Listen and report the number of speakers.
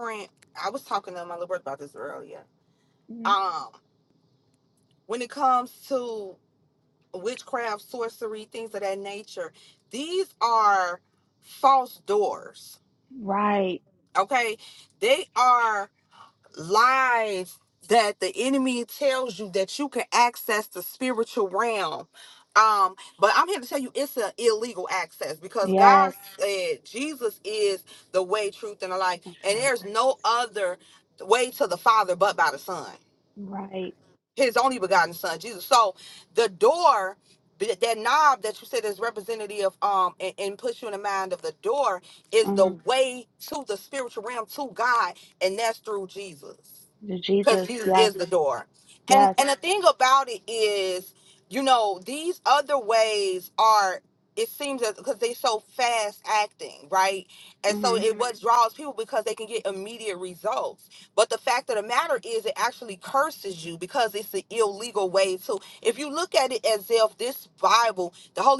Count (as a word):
two